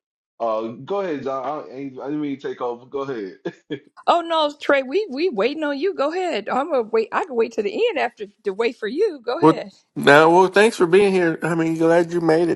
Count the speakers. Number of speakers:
3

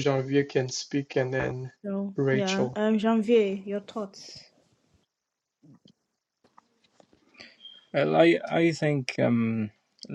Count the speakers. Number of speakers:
3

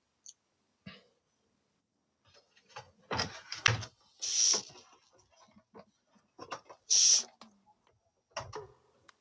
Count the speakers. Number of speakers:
0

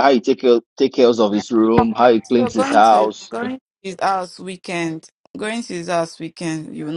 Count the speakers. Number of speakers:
2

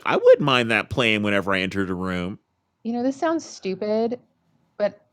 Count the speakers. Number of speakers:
2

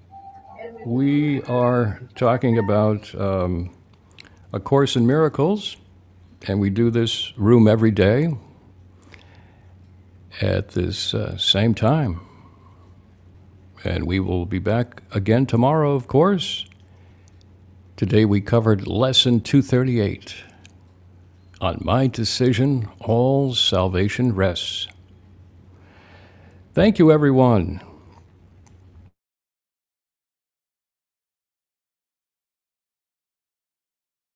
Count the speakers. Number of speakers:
1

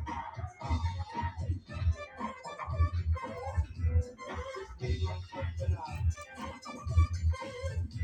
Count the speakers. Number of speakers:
0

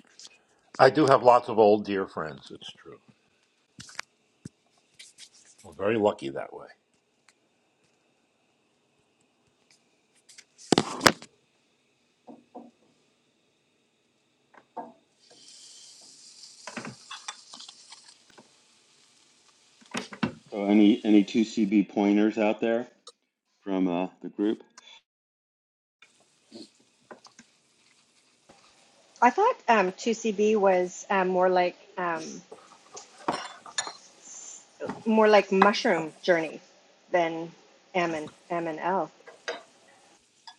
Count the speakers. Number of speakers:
3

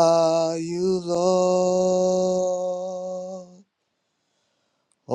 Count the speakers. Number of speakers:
1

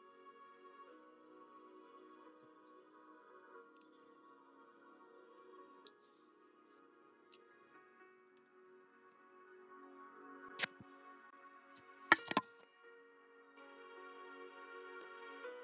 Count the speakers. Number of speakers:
0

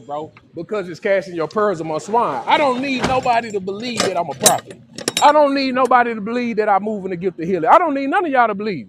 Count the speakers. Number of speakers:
1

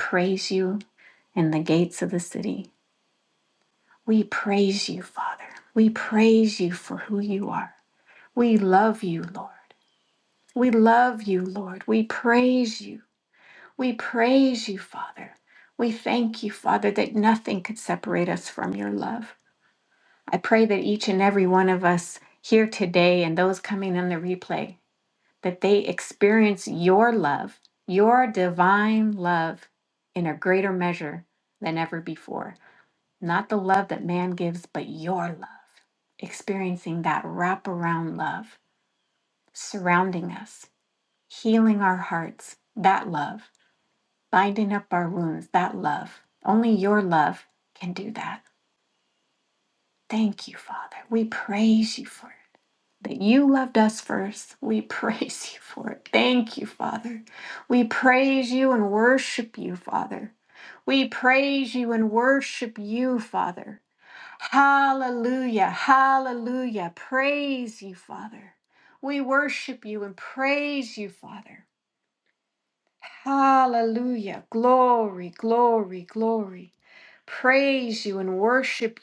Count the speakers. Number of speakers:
1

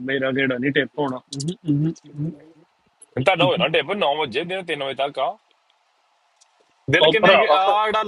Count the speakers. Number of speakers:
3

